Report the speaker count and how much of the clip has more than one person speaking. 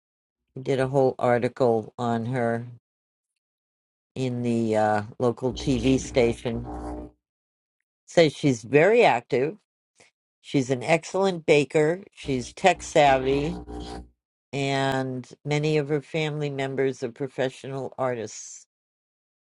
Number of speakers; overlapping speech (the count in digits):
1, no overlap